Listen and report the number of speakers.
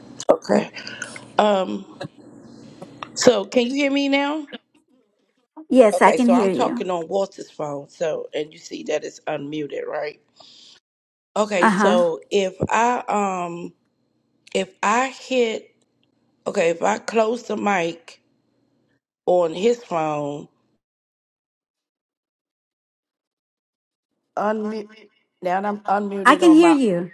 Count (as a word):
three